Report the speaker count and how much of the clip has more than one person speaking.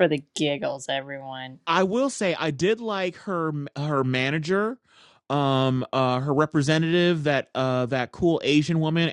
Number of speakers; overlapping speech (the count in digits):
2, no overlap